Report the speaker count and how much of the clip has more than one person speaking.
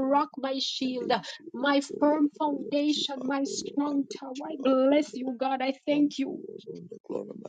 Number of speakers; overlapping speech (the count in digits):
2, about 65%